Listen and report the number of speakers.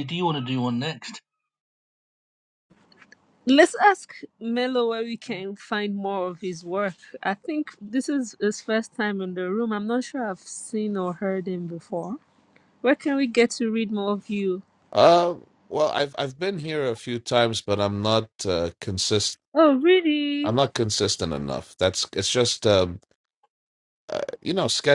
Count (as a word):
three